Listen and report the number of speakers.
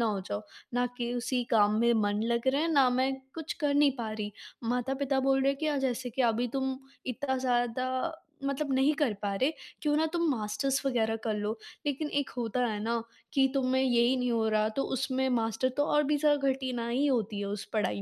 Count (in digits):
1